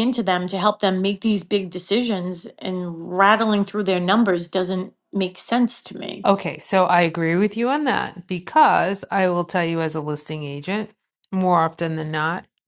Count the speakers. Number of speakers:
two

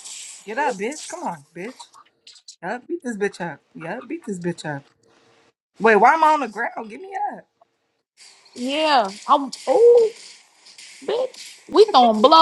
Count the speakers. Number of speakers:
two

